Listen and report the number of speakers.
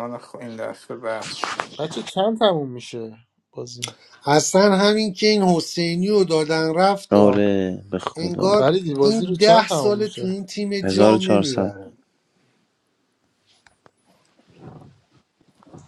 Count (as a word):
four